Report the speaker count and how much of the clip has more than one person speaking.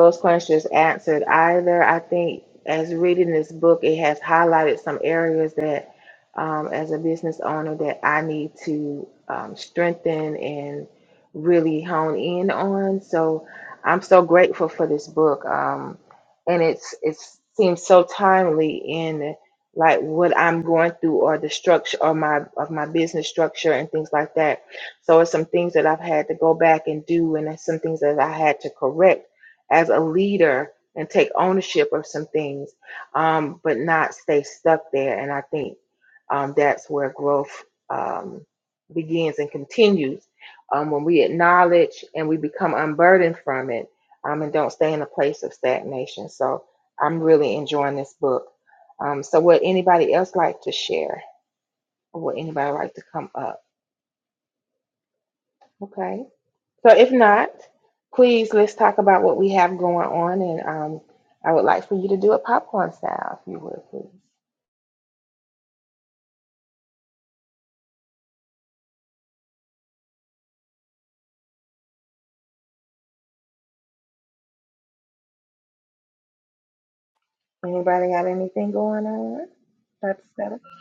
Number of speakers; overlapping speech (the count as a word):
one, no overlap